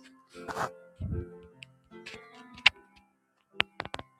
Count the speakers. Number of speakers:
0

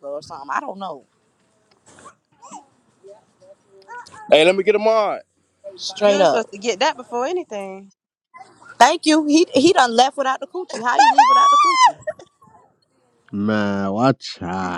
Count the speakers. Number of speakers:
4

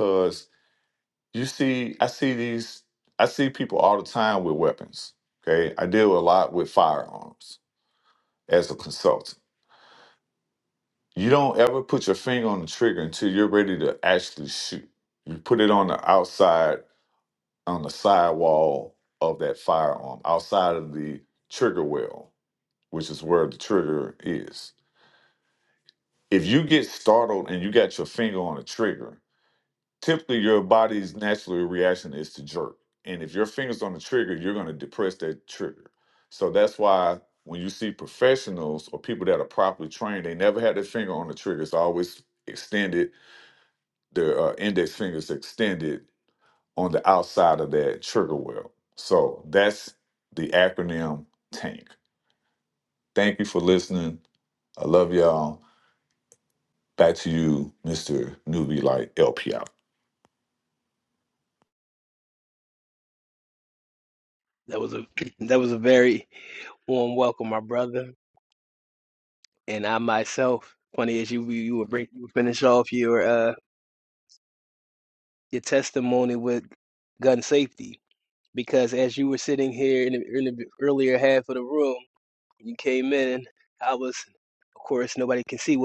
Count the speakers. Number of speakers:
2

